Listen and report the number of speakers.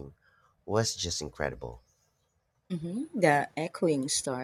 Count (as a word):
two